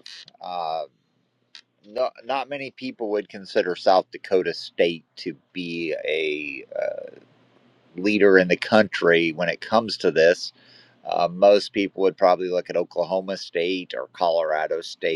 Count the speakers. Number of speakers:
one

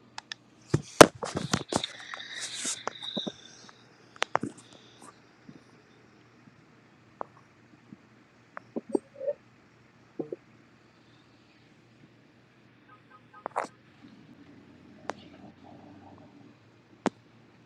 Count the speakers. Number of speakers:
zero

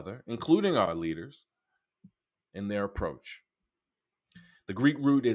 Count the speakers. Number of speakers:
one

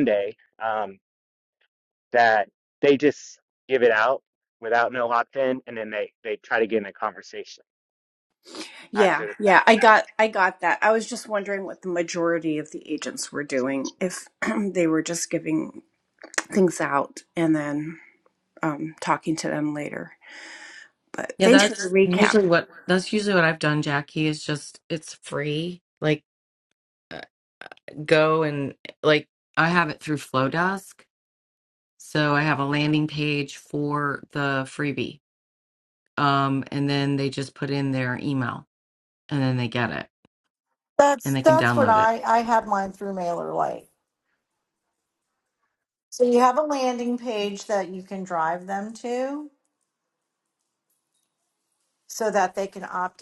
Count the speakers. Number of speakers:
four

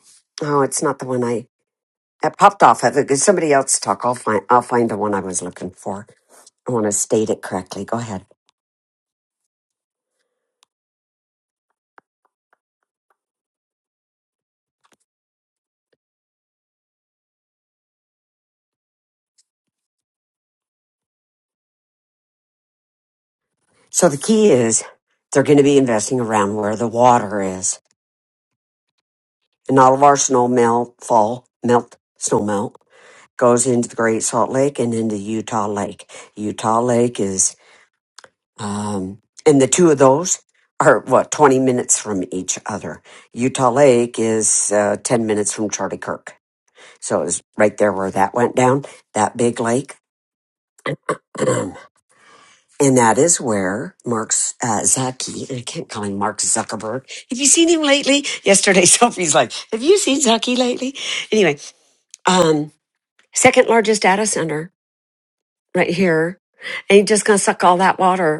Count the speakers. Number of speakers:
one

